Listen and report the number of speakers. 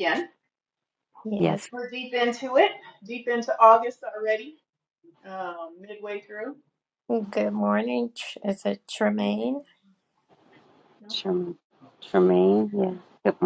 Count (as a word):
three